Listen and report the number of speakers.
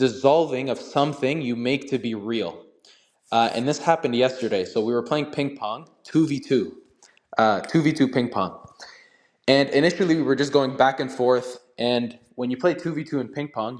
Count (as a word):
one